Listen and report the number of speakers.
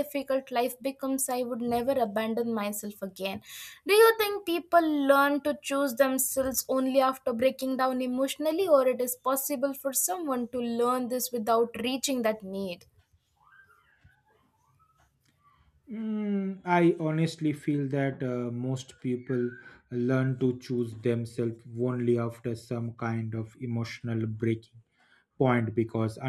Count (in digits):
2